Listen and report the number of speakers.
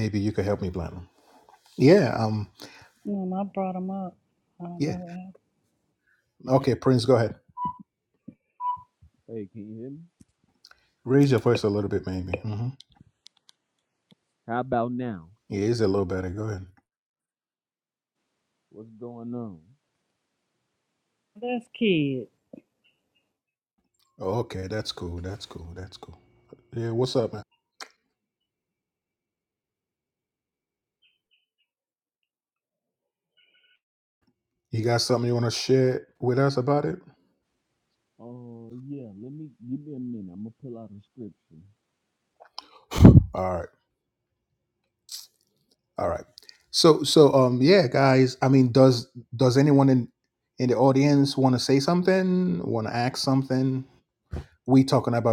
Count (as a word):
three